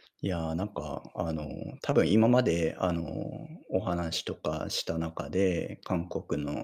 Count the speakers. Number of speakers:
1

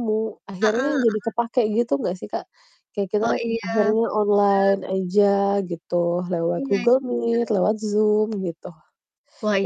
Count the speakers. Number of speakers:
2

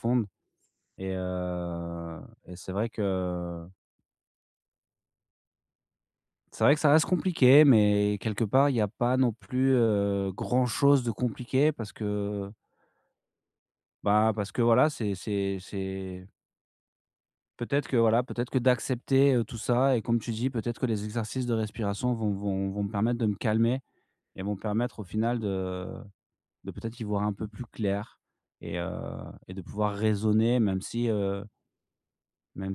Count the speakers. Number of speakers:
1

